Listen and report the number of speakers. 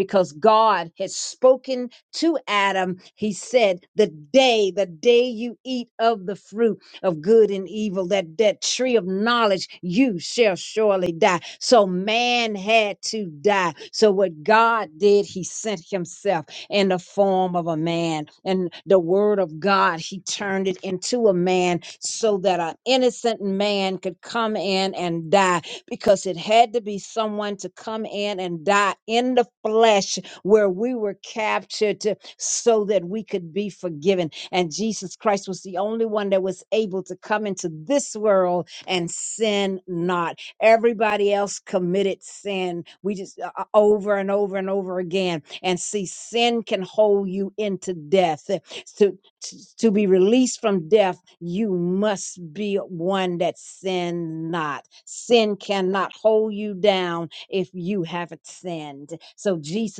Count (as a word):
one